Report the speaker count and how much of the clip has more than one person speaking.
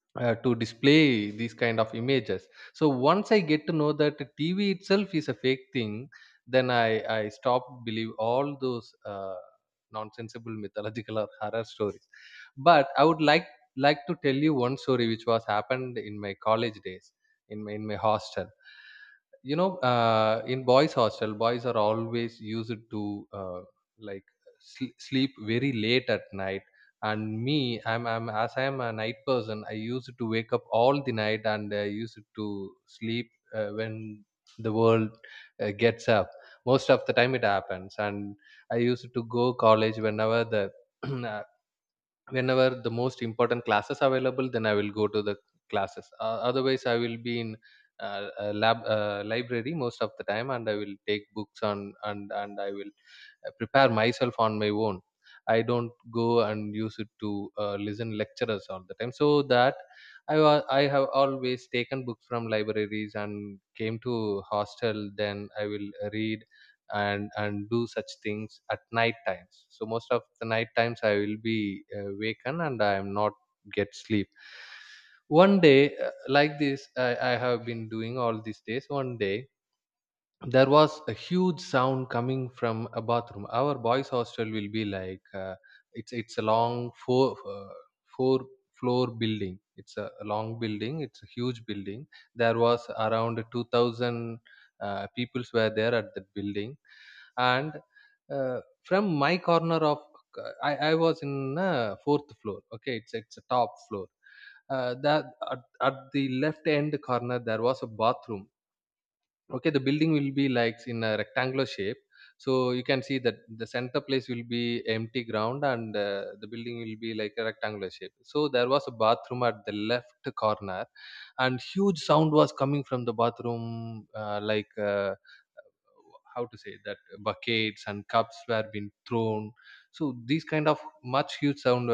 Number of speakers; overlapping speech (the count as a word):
one, no overlap